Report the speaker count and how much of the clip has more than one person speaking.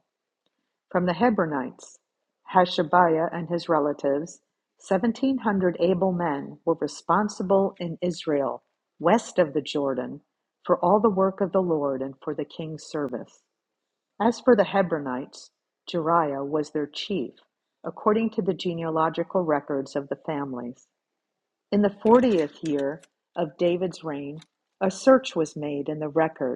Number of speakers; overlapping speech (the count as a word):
one, no overlap